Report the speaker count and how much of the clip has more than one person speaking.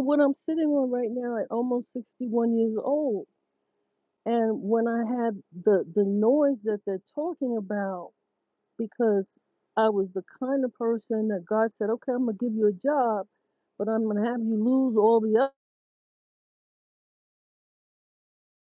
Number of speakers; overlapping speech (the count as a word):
one, no overlap